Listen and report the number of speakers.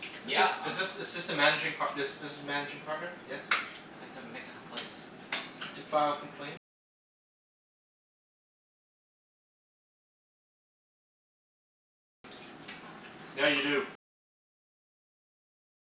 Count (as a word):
two